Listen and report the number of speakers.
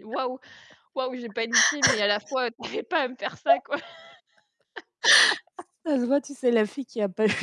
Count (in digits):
2